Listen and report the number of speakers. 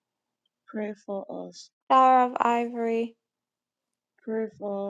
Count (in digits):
2